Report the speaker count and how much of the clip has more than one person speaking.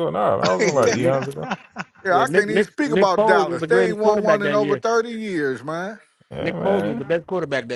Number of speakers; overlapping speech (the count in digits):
3, about 48%